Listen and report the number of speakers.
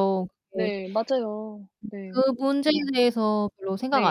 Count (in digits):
2